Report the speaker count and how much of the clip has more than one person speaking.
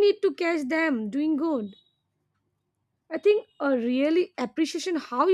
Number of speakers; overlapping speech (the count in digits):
1, no overlap